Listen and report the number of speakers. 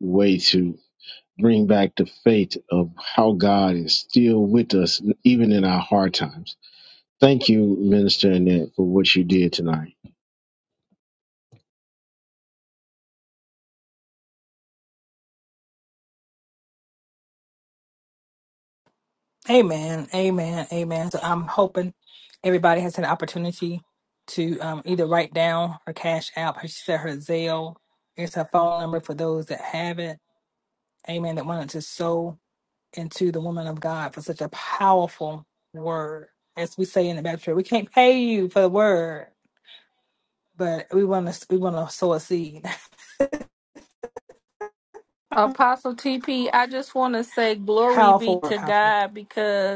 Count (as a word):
three